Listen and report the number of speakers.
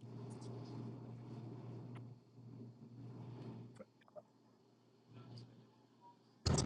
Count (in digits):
0